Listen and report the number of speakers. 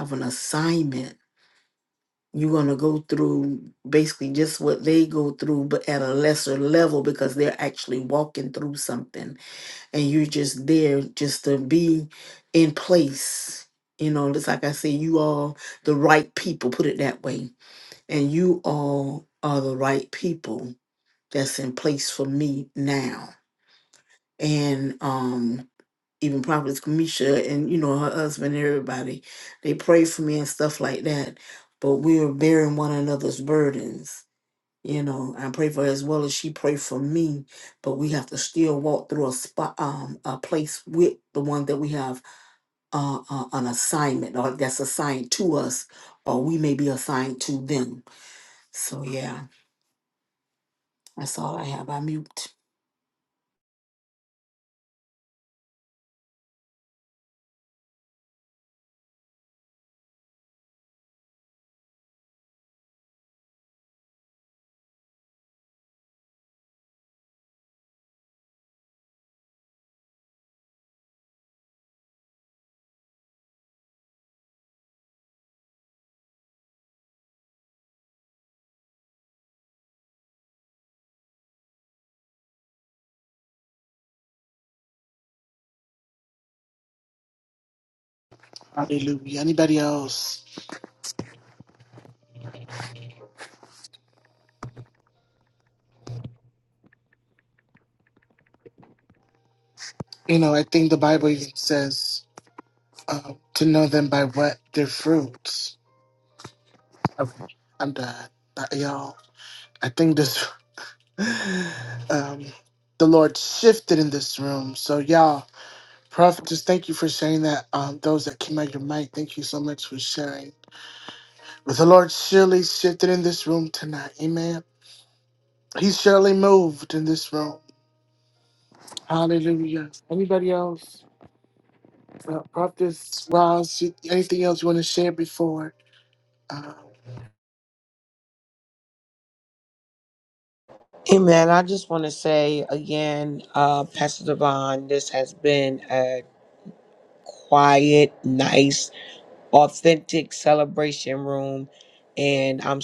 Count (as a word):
three